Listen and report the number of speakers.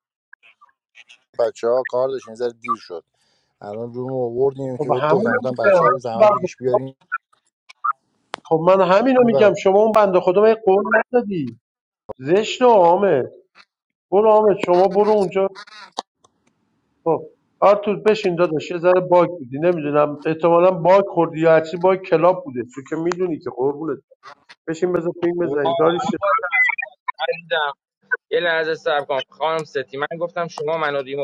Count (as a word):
three